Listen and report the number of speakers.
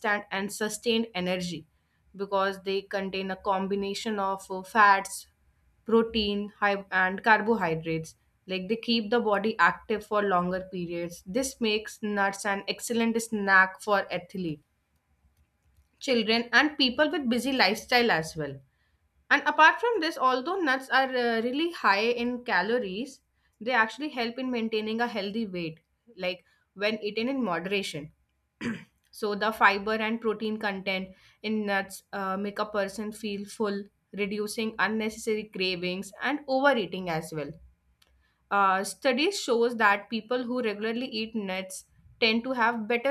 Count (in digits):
1